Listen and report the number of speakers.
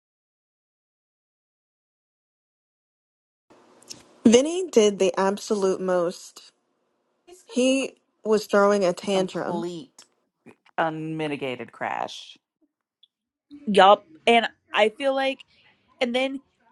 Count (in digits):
3